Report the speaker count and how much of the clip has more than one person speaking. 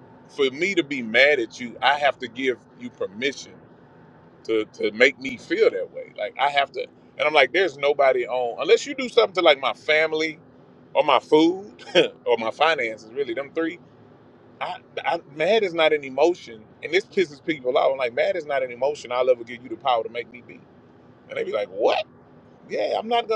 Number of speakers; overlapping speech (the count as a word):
one, no overlap